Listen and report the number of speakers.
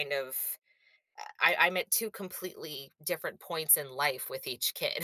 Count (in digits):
1